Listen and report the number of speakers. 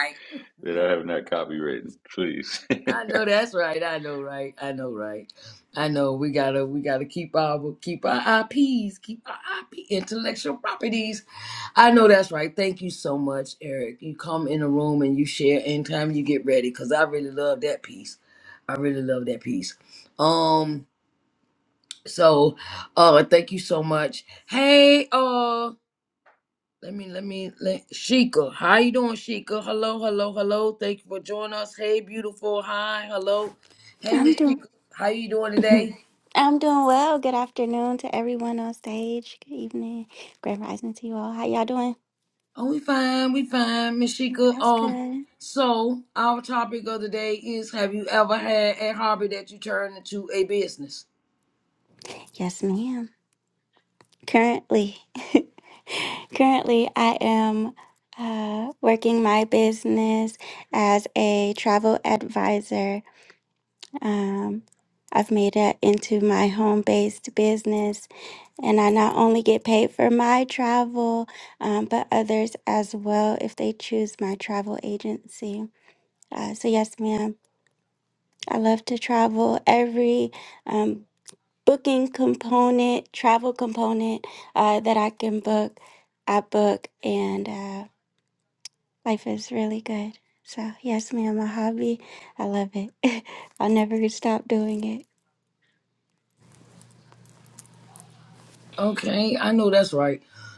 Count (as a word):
three